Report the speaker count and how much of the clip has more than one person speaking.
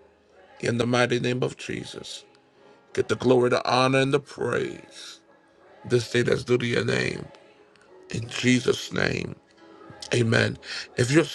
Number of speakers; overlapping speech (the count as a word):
one, no overlap